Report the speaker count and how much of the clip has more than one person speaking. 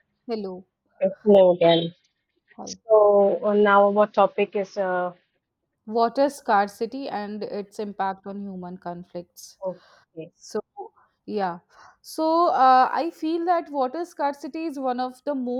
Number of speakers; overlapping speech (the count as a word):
two, no overlap